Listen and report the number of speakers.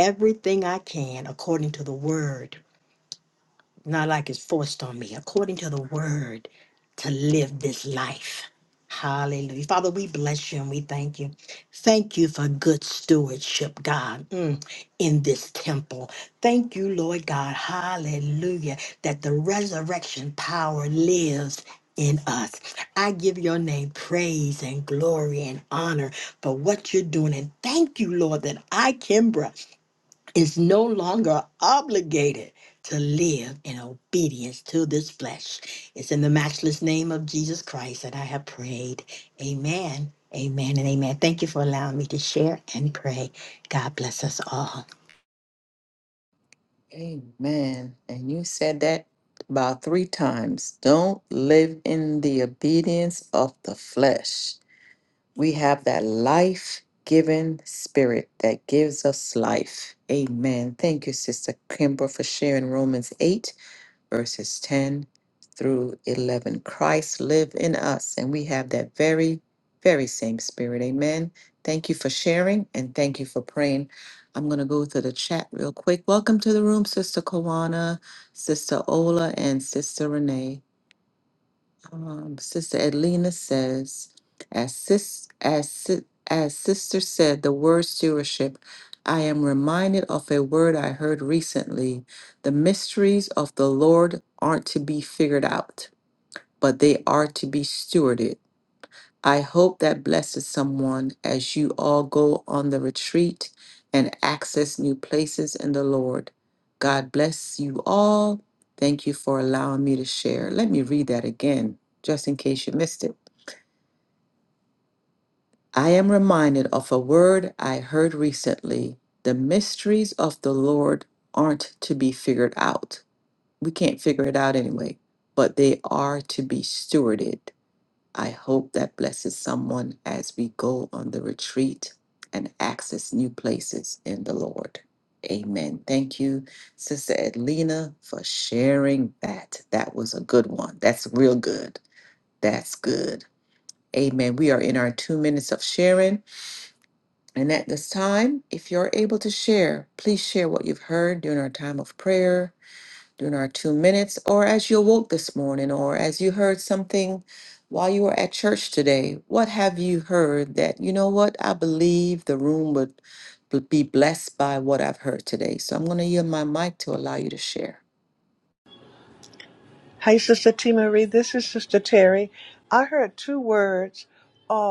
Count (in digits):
3